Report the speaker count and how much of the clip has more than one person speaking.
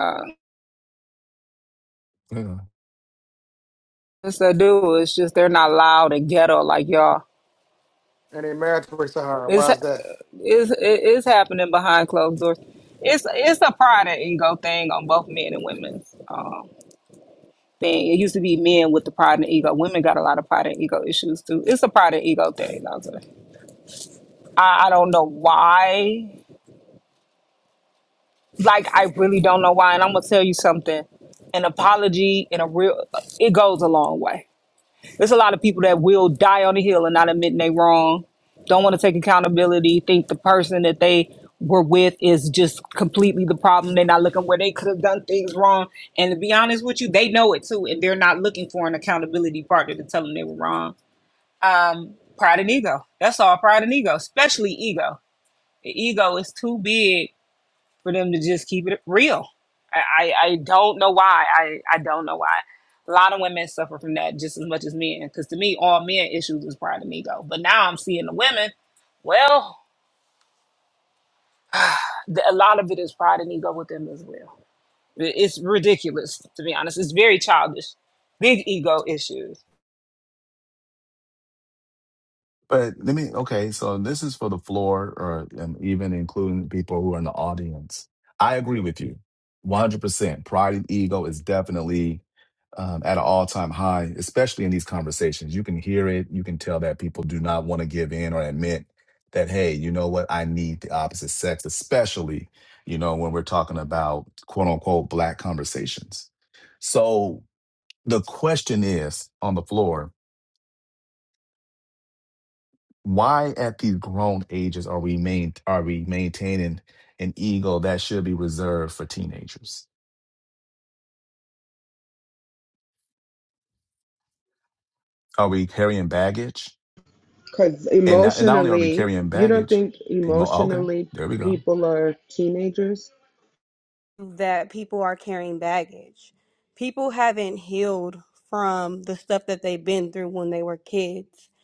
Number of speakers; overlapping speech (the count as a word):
five, about 2%